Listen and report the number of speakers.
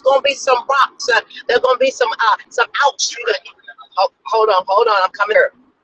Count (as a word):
one